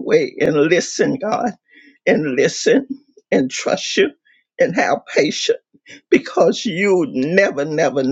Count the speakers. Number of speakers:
one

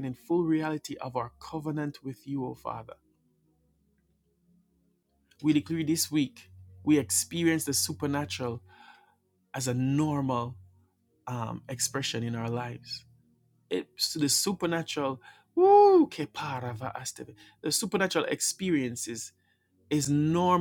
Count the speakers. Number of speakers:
one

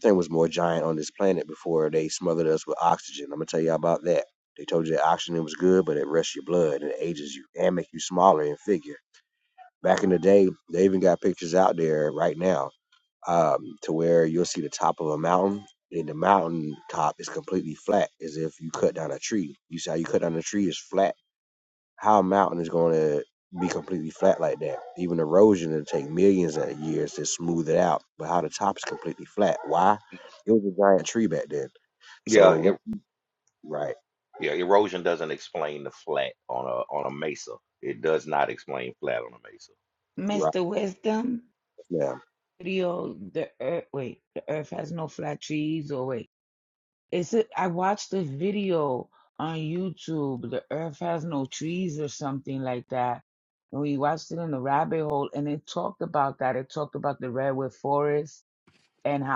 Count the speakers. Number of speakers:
three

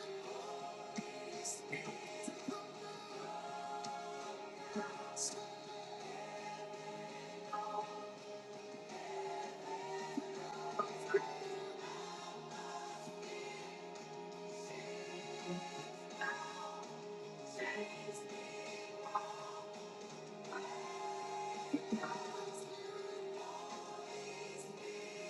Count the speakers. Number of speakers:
zero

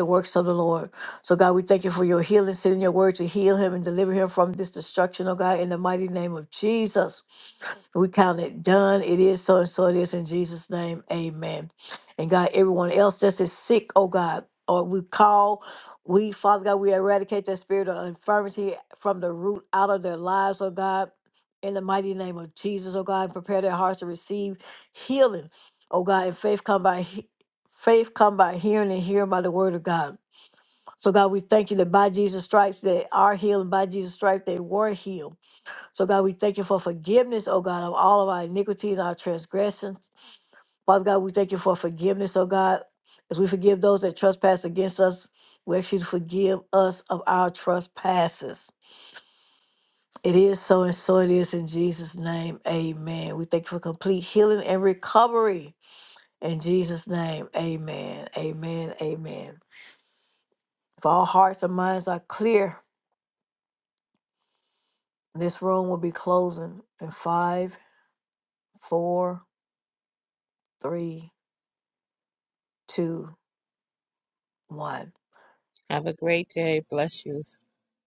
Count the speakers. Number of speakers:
two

